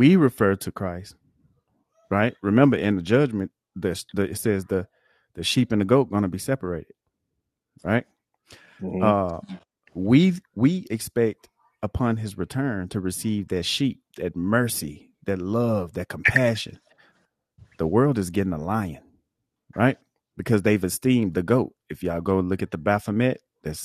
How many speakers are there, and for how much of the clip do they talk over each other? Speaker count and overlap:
one, no overlap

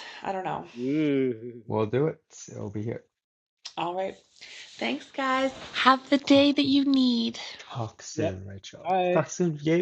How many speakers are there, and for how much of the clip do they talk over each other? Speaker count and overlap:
three, about 6%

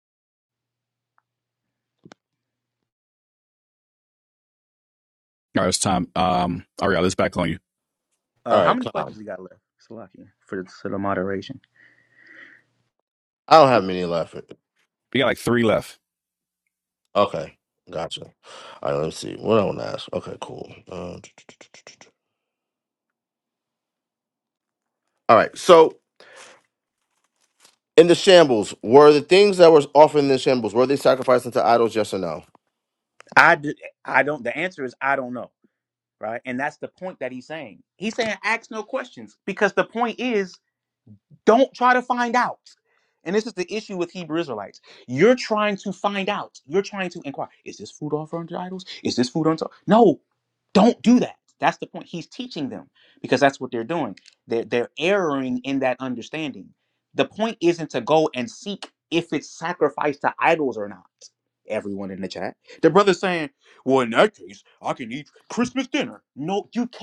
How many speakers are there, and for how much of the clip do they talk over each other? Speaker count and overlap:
three, about 1%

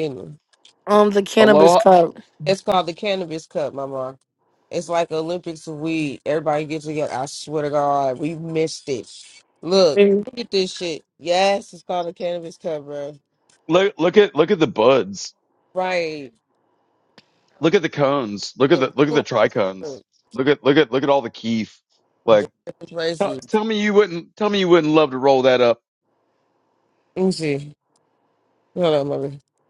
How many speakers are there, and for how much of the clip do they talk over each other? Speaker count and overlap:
three, about 5%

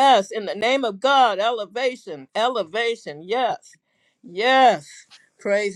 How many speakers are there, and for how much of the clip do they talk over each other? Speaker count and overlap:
one, no overlap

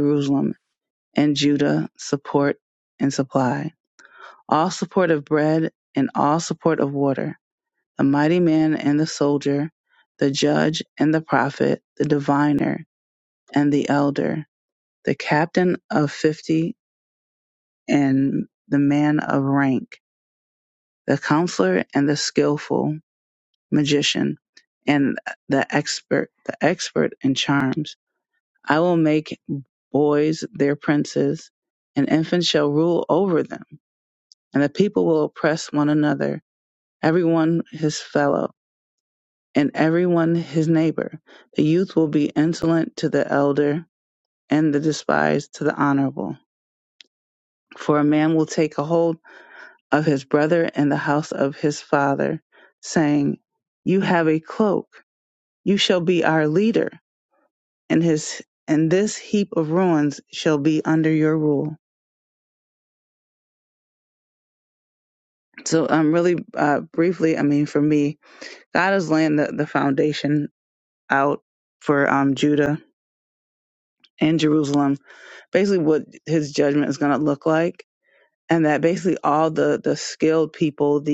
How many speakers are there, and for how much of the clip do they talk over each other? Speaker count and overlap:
one, no overlap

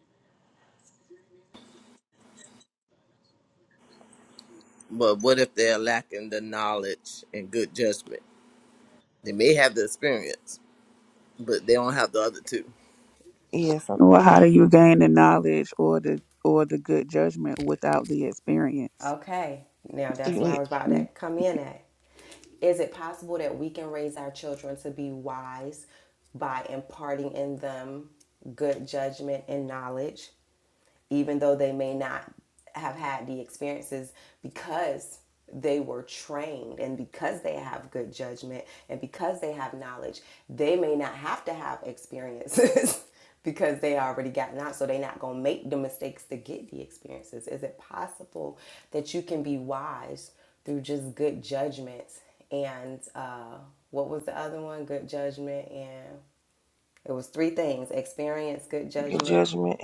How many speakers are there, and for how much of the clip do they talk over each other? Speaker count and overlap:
four, about 2%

